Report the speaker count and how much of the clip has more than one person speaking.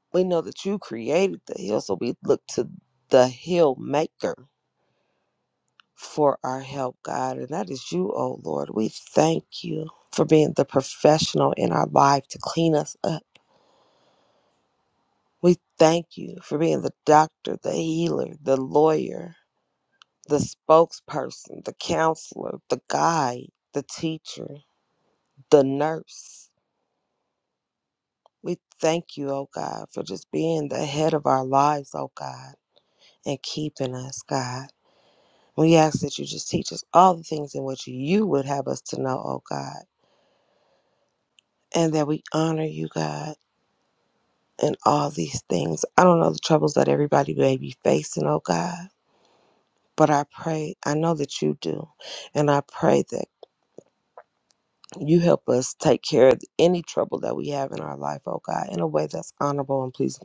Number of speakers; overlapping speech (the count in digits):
1, no overlap